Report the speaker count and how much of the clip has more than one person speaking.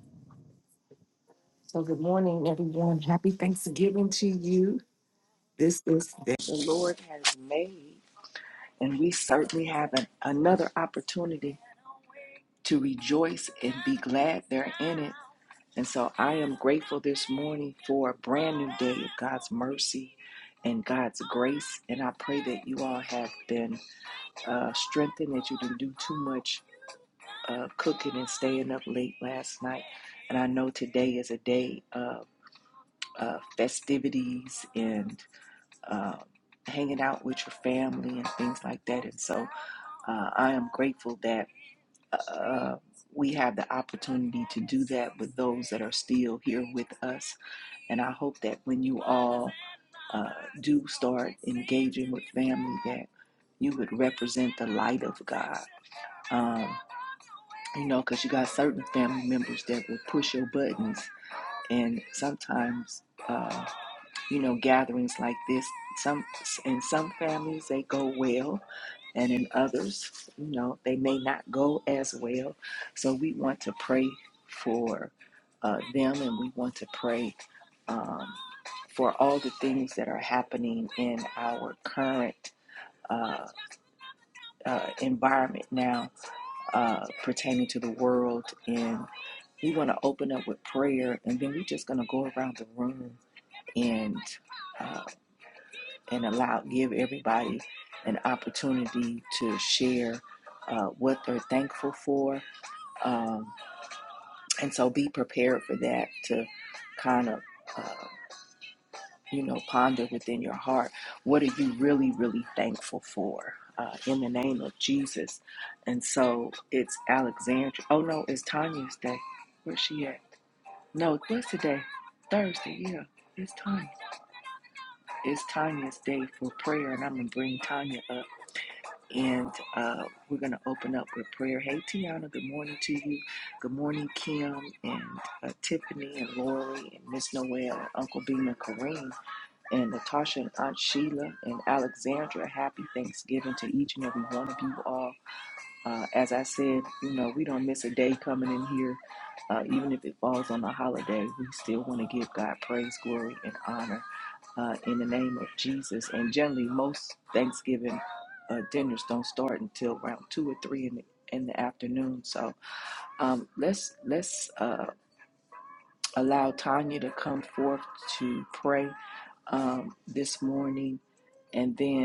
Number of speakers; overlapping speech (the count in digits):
1, no overlap